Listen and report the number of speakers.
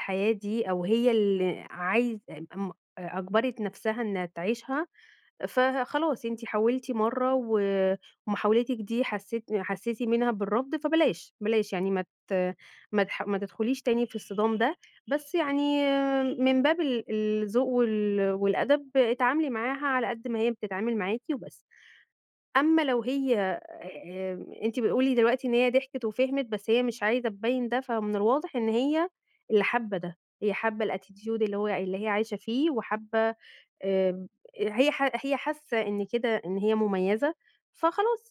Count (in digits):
1